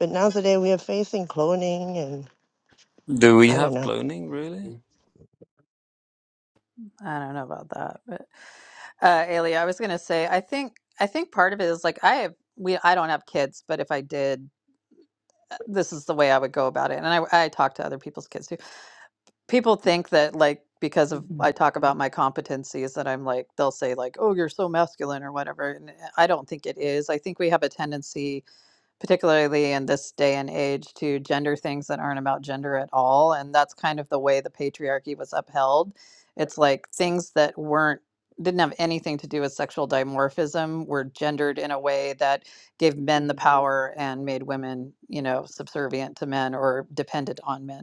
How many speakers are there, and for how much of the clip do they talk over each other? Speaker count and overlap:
three, about 1%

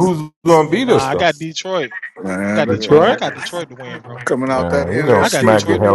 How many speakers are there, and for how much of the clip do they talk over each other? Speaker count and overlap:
three, about 46%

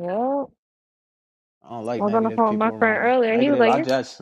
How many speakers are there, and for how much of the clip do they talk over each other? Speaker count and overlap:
two, about 45%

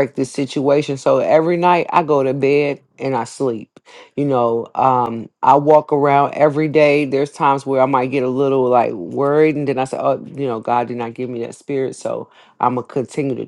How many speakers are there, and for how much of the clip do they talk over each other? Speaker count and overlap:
one, no overlap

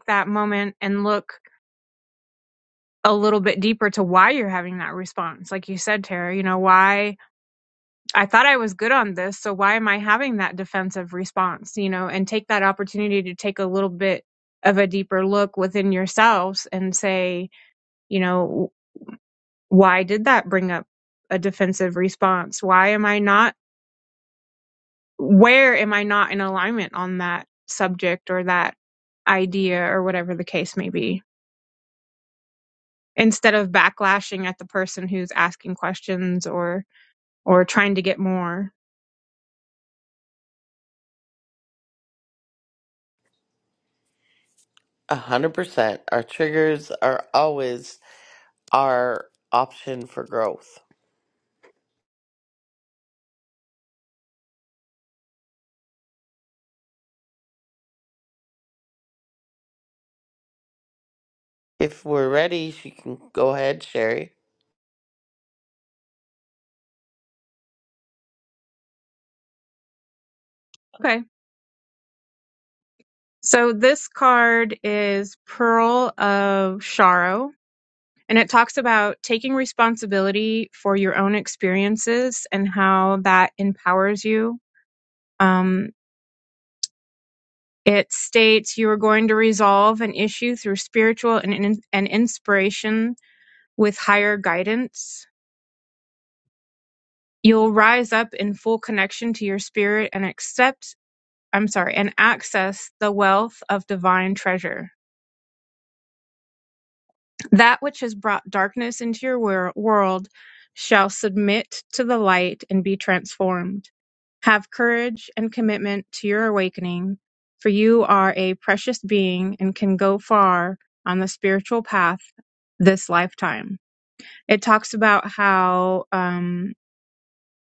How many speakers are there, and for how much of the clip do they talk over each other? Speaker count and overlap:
two, no overlap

